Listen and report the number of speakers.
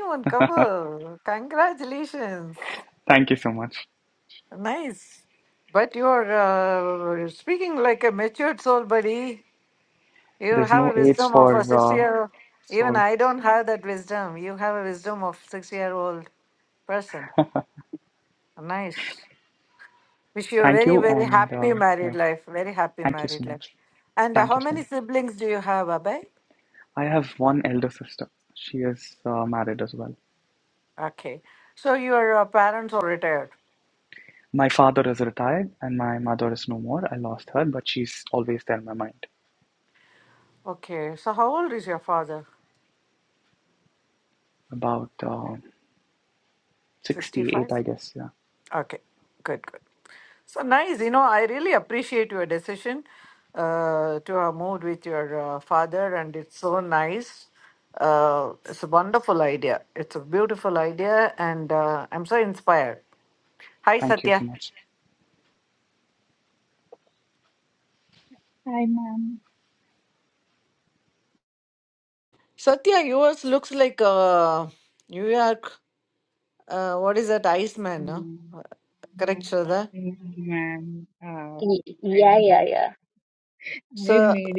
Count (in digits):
4